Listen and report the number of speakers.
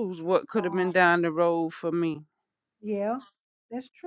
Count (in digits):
2